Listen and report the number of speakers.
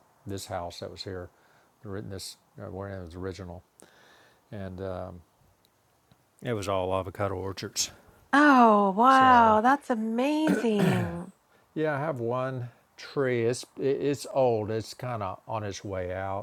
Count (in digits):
2